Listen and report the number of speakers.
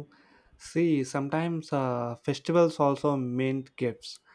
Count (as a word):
one